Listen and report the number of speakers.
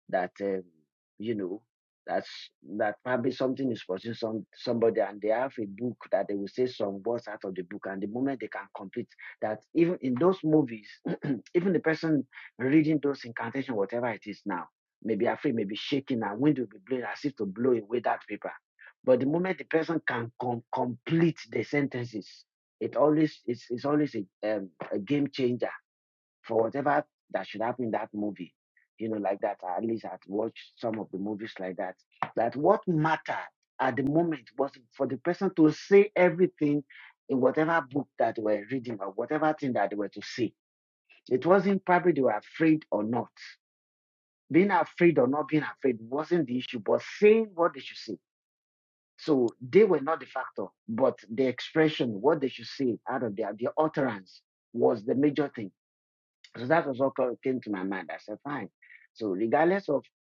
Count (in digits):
1